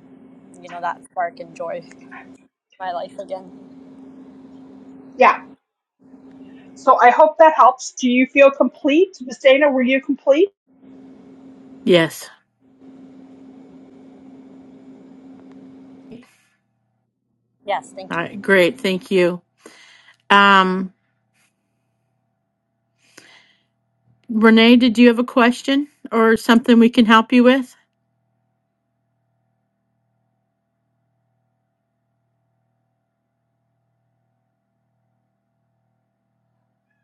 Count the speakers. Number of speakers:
three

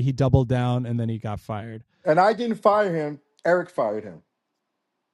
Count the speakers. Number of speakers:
two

